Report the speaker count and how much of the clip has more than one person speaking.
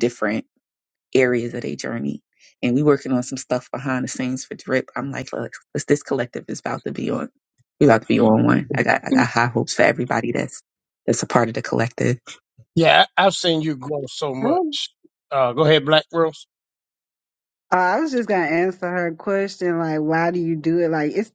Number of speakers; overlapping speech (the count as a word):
three, no overlap